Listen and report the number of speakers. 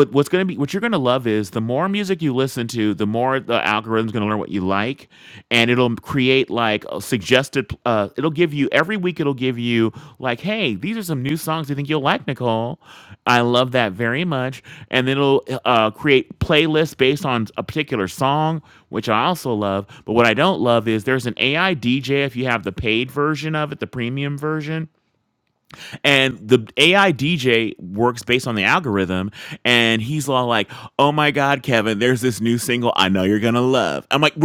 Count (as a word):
one